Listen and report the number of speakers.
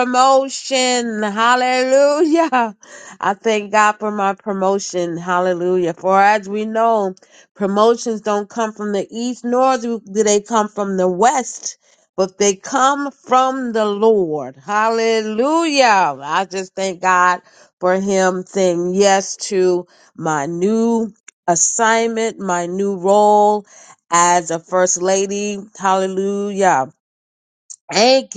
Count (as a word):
one